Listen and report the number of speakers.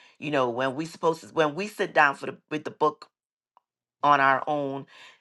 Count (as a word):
one